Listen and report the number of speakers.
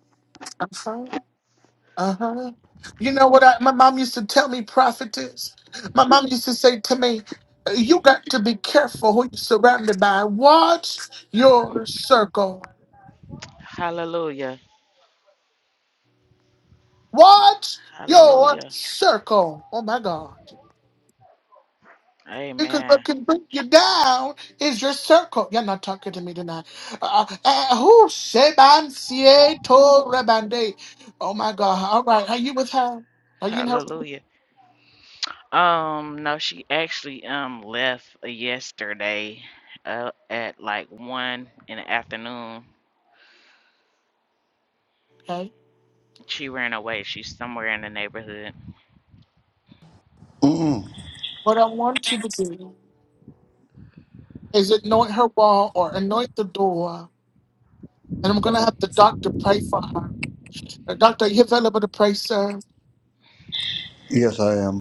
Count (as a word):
three